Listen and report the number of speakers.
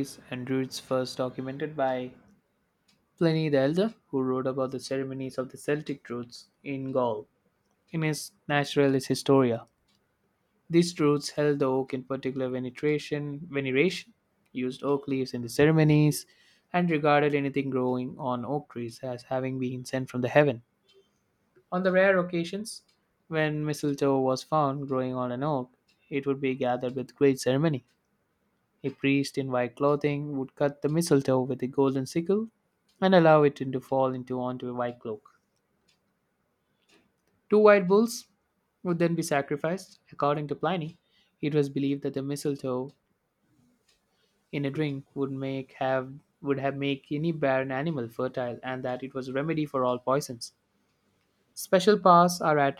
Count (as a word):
one